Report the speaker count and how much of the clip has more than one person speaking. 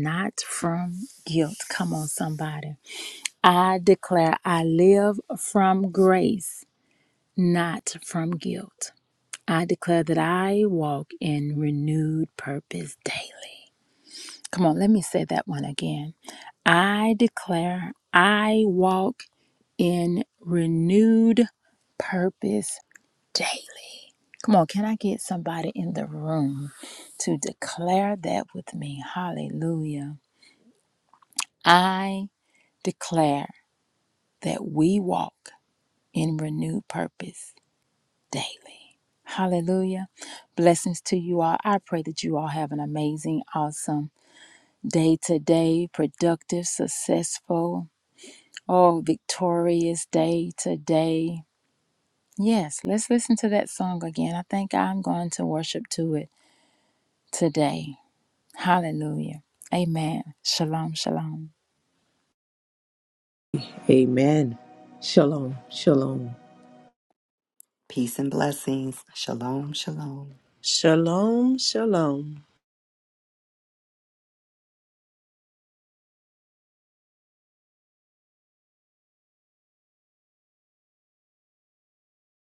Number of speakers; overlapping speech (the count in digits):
4, no overlap